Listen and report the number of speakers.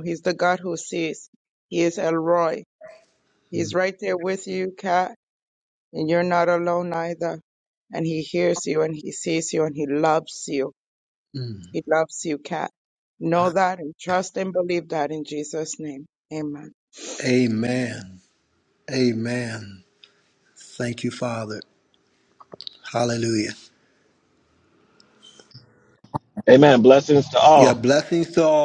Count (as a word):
three